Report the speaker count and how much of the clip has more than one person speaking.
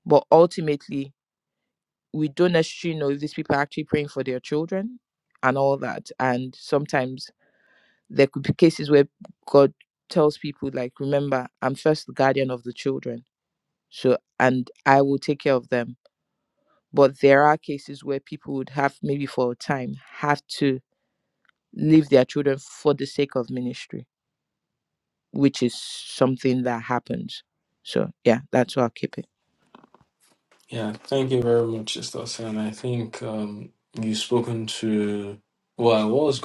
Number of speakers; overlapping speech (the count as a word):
two, no overlap